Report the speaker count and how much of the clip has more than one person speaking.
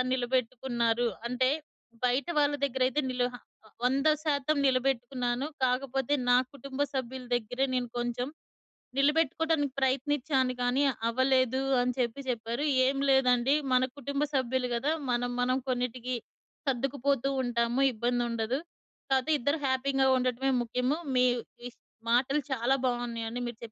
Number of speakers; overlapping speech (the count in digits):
1, no overlap